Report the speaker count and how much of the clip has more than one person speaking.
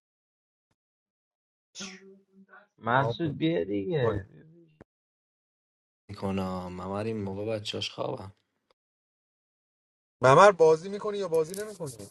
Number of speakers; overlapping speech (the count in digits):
3, about 4%